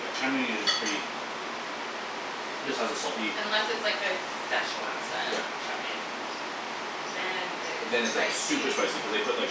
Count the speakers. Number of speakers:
2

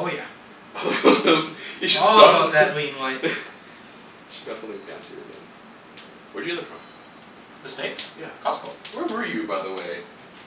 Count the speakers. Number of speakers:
2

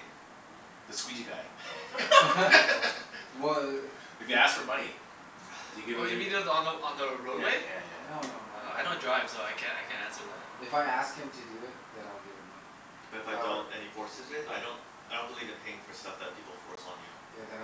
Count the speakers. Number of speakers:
4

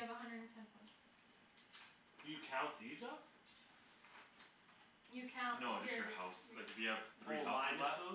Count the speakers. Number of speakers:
3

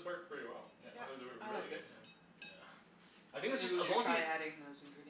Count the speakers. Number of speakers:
3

